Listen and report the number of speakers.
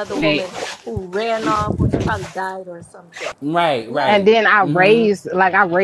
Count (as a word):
three